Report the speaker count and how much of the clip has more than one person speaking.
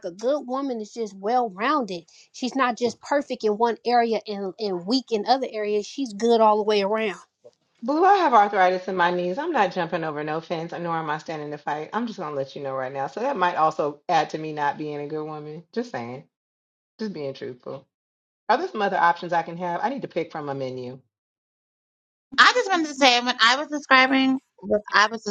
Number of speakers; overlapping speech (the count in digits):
3, no overlap